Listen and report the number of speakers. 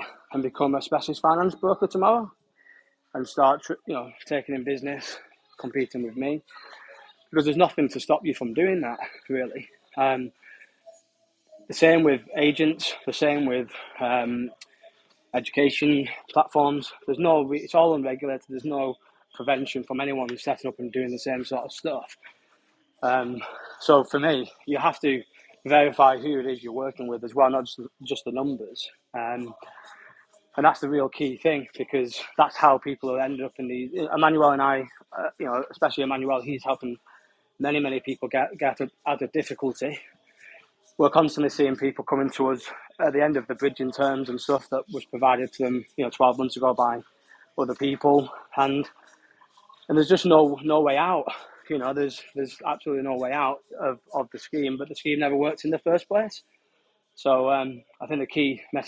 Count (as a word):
one